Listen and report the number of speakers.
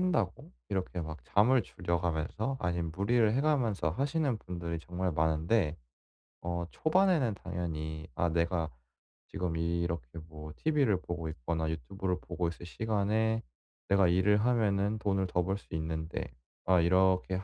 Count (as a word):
one